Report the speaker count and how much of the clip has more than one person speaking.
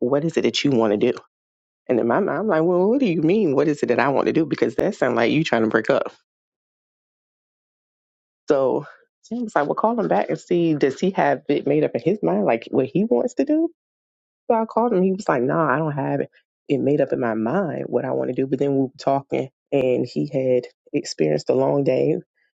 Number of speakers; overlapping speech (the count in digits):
1, no overlap